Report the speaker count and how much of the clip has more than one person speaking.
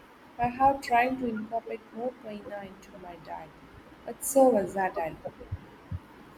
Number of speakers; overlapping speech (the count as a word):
one, no overlap